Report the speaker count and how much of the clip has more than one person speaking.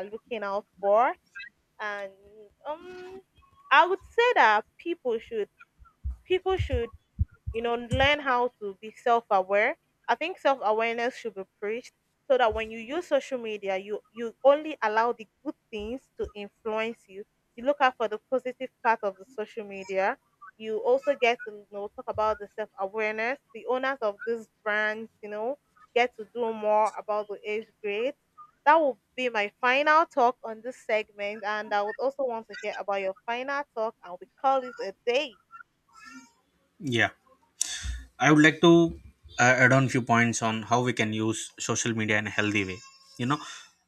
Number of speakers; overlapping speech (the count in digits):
2, no overlap